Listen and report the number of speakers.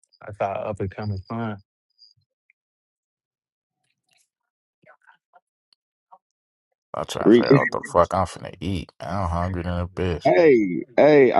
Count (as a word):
three